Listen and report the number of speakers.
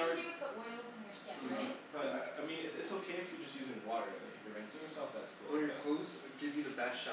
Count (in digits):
3